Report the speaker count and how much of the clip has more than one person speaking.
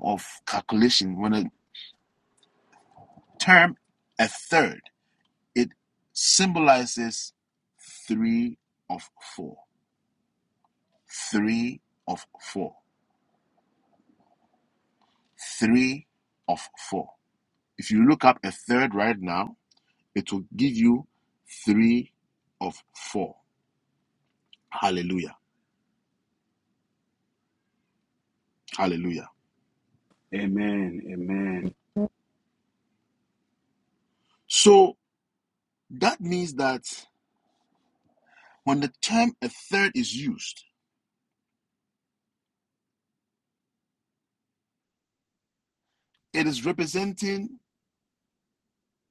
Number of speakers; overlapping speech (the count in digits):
2, no overlap